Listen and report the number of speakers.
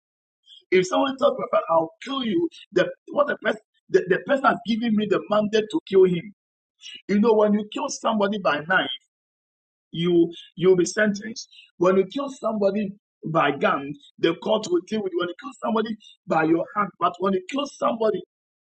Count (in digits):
1